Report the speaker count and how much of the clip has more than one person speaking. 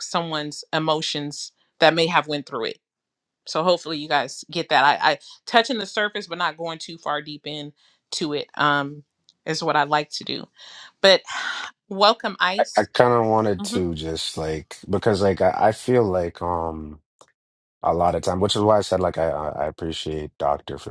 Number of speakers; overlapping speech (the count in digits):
2, about 1%